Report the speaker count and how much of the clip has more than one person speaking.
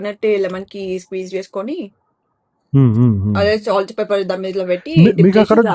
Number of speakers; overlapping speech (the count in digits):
2, about 15%